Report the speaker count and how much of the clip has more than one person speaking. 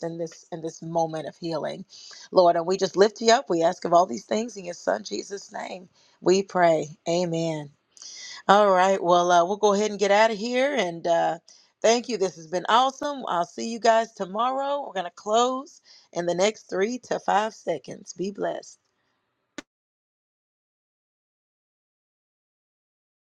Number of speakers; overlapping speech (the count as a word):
one, no overlap